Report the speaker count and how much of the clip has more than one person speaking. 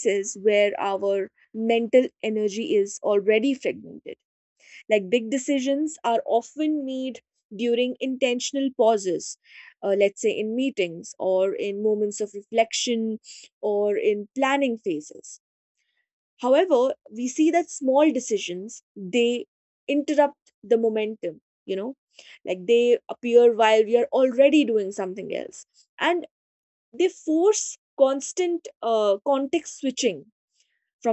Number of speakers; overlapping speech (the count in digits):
1, no overlap